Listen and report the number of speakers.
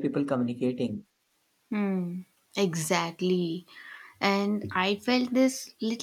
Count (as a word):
two